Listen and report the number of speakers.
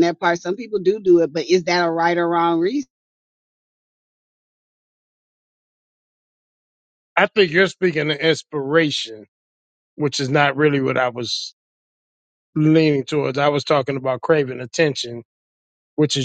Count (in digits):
2